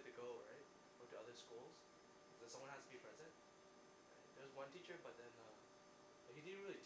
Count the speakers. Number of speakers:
1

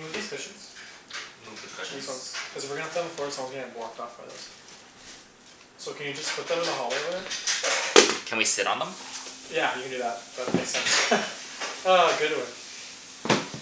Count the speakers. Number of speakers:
2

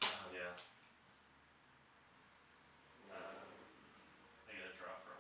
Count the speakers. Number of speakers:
1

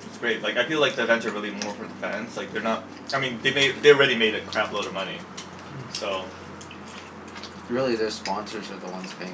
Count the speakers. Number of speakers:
2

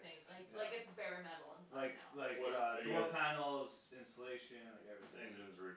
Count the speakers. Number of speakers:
3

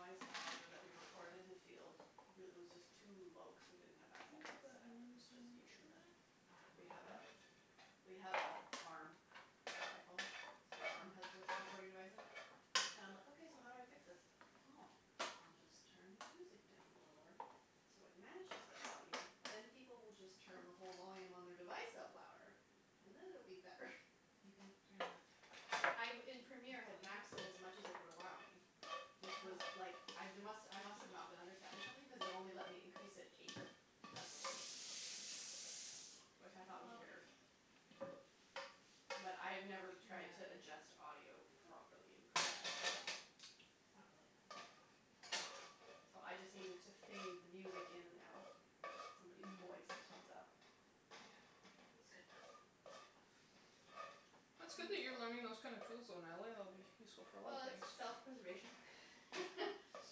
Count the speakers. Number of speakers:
3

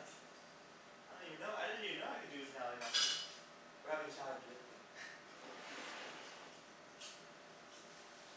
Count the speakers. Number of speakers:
1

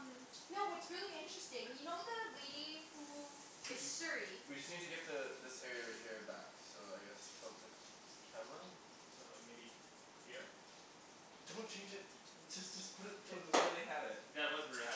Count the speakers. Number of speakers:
4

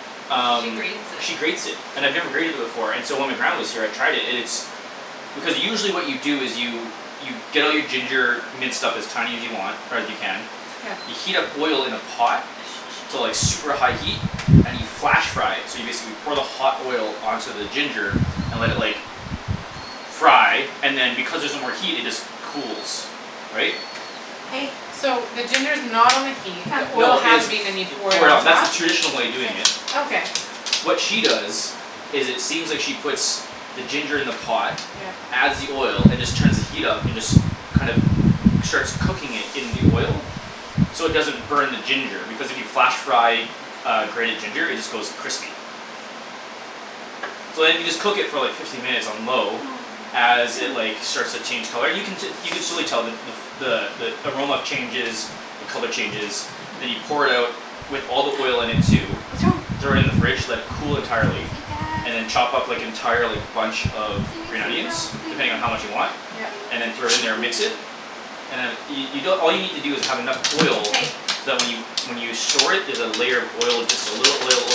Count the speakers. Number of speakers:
3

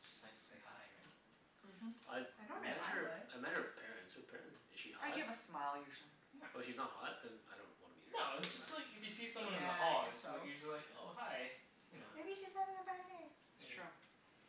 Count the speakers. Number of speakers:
4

